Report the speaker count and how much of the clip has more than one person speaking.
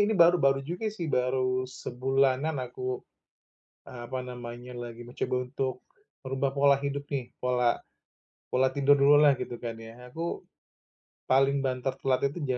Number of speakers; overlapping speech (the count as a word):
one, no overlap